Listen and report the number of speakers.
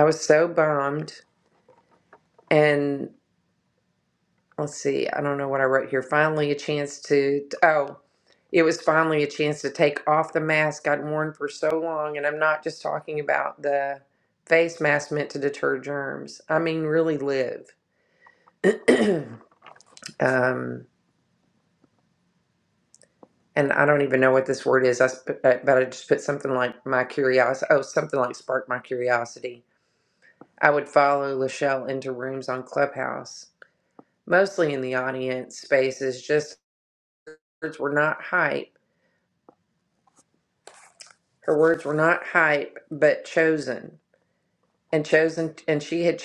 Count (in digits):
1